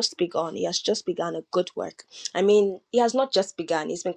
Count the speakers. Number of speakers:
1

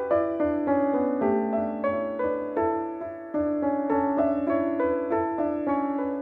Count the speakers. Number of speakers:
0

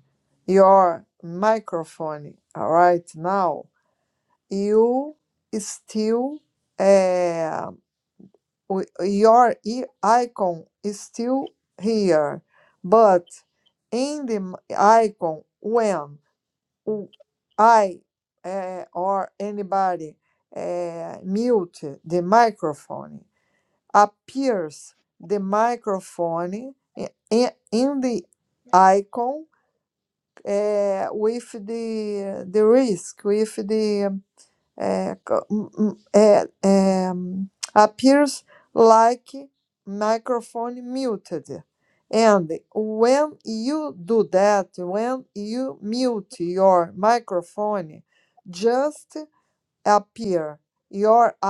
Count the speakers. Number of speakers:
1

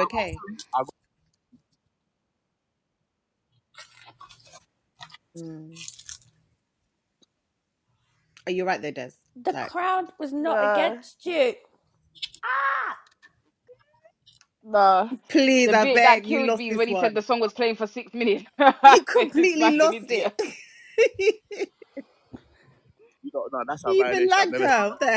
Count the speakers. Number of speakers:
3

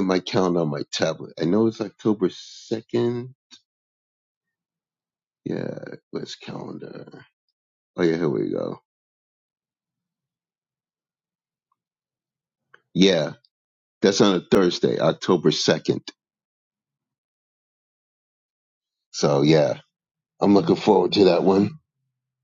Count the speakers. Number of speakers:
1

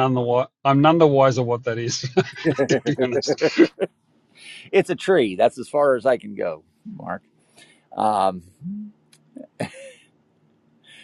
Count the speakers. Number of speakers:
2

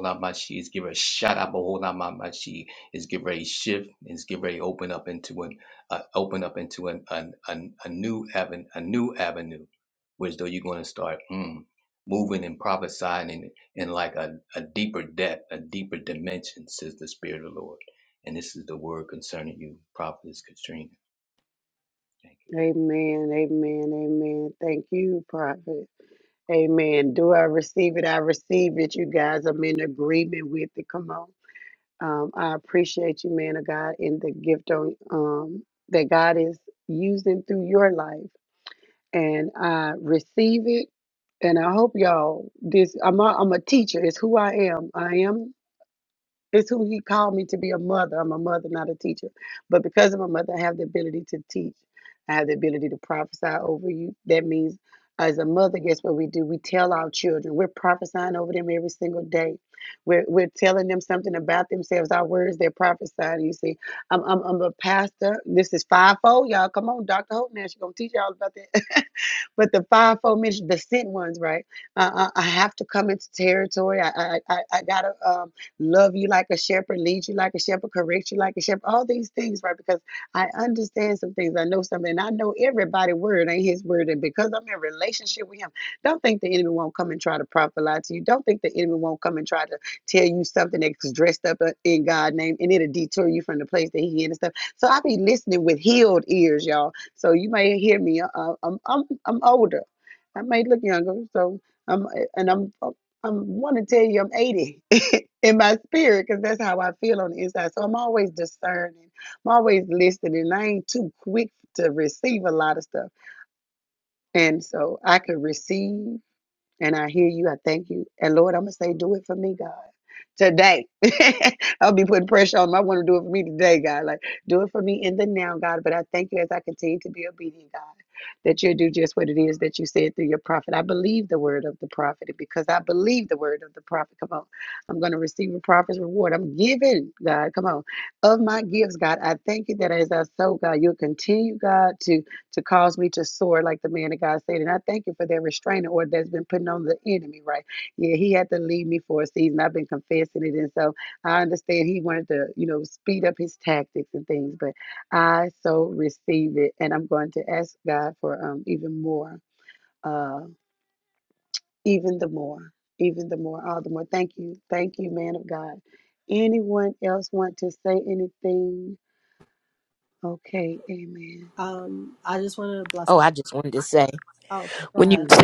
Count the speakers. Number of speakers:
4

